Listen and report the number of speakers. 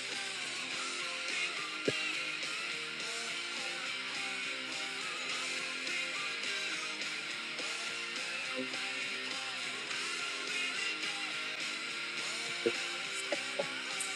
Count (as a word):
zero